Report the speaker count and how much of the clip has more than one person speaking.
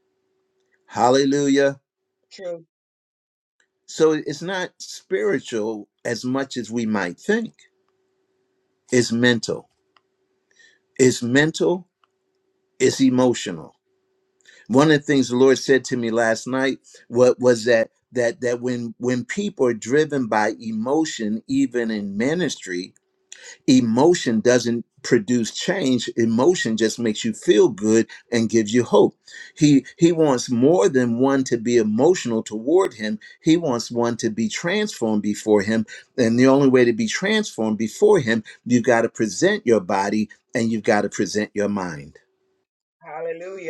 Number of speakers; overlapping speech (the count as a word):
two, no overlap